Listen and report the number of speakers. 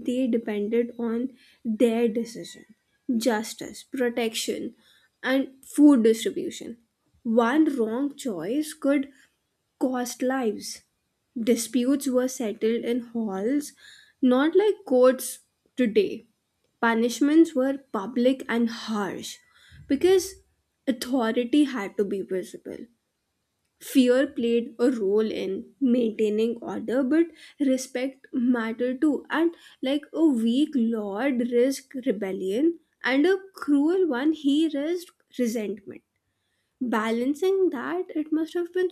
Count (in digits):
1